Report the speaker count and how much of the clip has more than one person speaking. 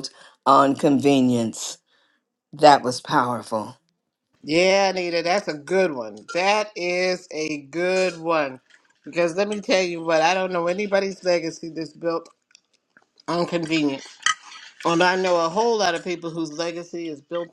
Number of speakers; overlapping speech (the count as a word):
two, no overlap